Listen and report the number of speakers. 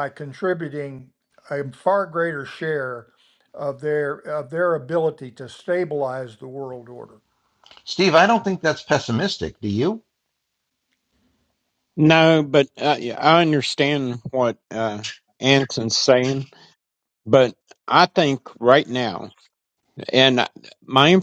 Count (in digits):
3